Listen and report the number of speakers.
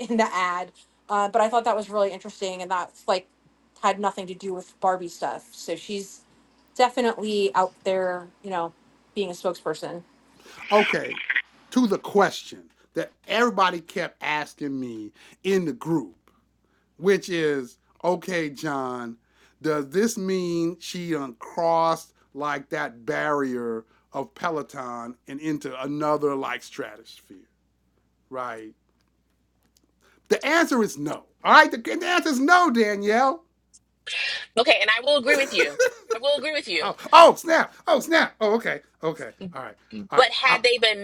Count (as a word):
three